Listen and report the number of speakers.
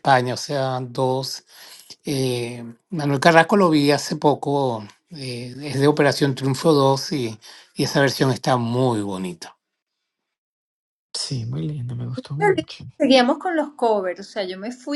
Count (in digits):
3